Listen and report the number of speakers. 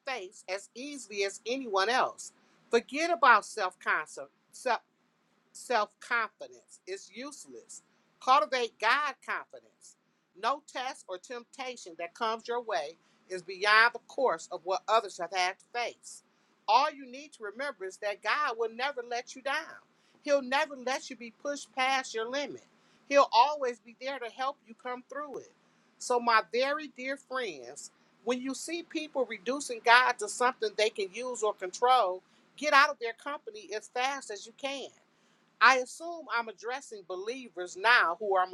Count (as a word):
one